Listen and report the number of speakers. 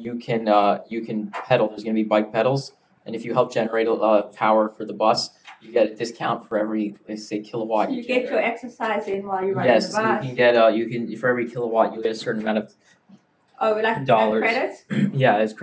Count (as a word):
two